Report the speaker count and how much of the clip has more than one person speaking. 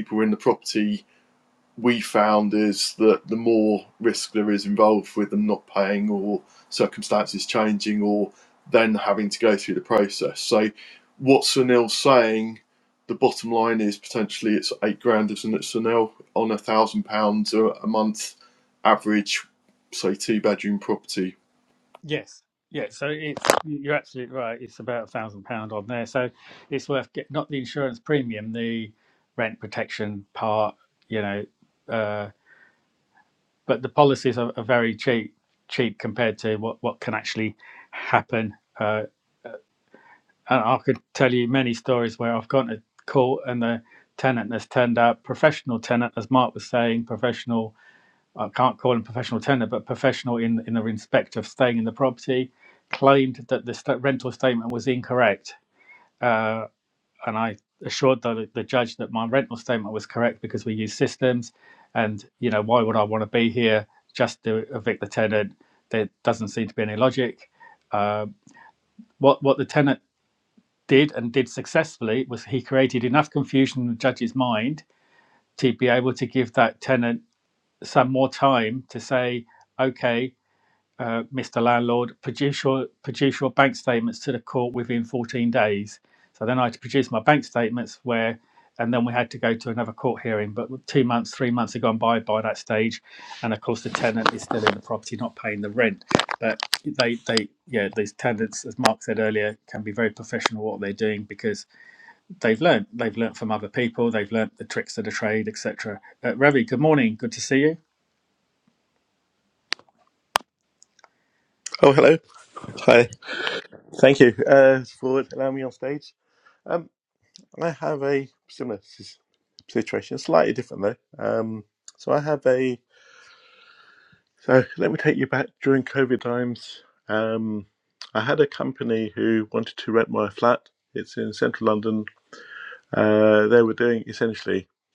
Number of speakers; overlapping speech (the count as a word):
three, no overlap